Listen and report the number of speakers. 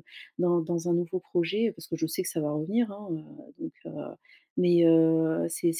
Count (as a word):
one